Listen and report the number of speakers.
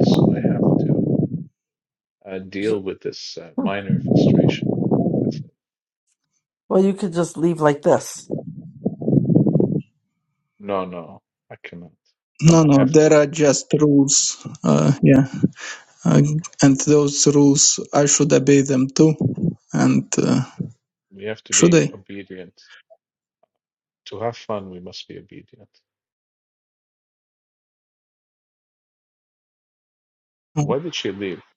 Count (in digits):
3